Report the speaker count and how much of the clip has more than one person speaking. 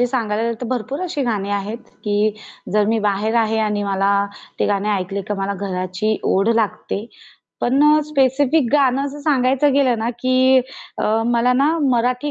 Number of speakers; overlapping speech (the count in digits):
1, no overlap